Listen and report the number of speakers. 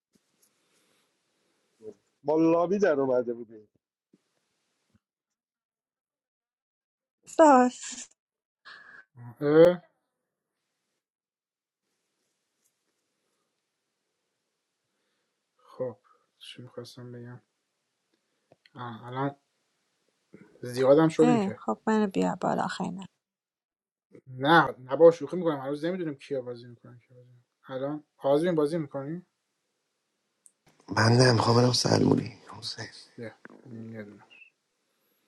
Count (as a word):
four